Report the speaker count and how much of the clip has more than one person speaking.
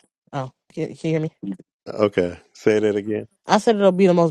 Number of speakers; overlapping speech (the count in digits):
2, no overlap